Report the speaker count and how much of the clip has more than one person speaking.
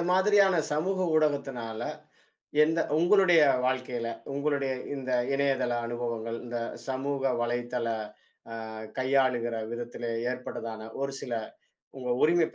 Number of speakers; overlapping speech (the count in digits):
1, no overlap